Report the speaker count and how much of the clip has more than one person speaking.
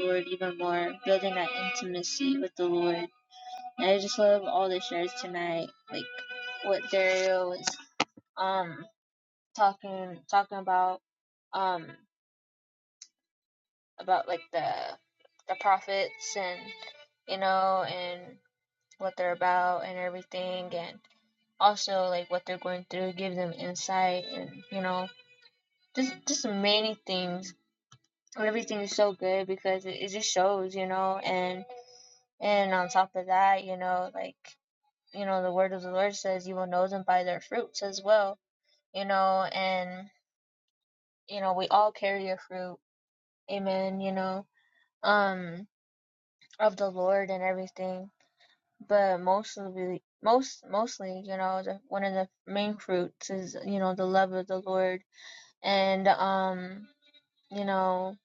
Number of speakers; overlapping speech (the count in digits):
1, no overlap